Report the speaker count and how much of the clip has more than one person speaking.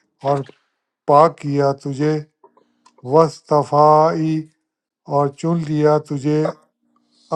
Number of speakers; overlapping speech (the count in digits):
1, no overlap